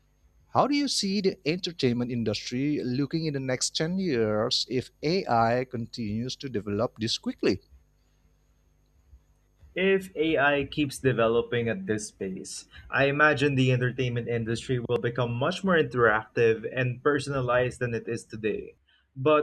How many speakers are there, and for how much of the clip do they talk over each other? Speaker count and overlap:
2, no overlap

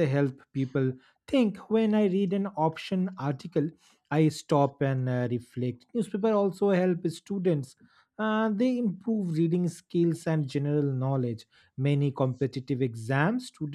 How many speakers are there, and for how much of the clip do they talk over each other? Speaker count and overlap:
1, no overlap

